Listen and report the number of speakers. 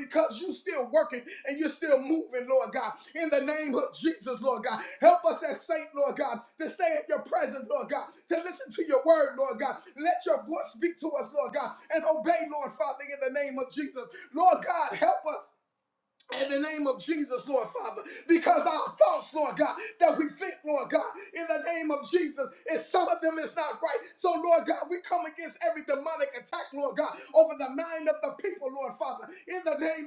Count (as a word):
one